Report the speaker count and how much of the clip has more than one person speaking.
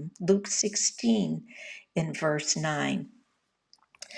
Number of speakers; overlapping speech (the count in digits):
1, no overlap